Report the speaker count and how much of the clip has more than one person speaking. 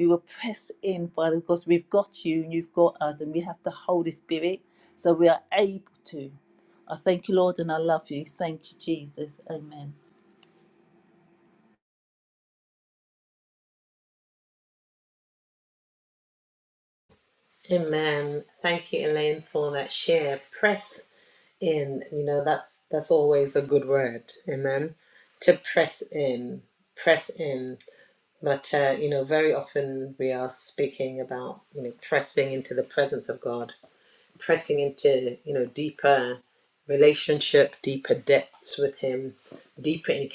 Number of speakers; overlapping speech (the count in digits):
2, no overlap